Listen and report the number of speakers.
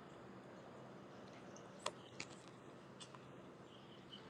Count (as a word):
zero